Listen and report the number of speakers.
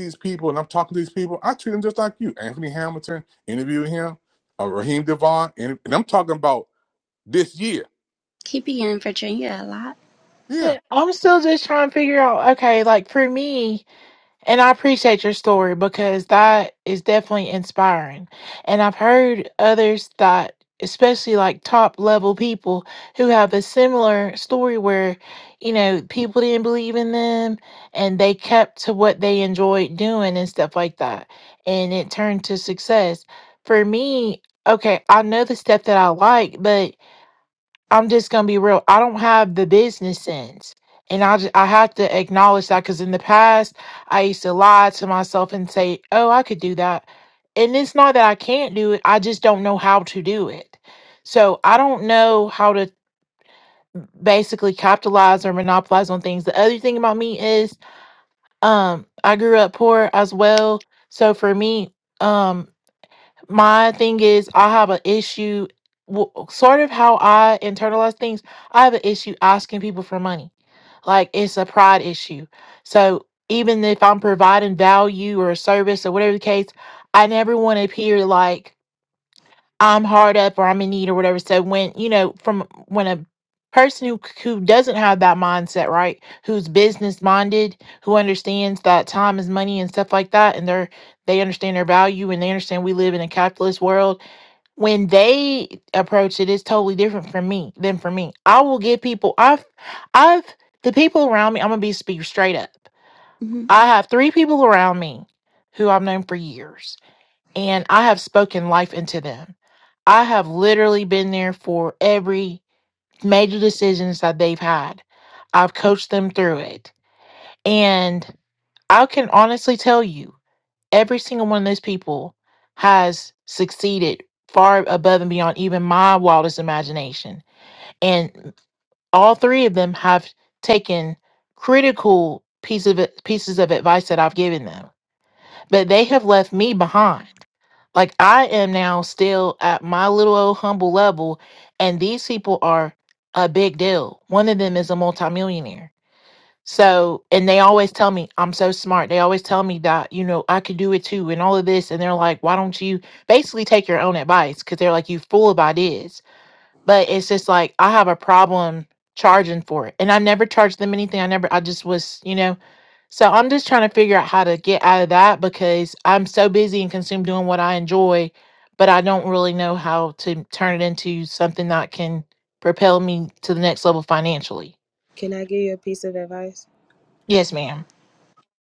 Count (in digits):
4